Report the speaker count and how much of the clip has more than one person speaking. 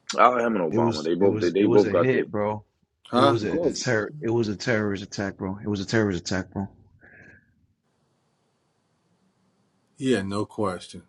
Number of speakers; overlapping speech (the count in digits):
3, about 20%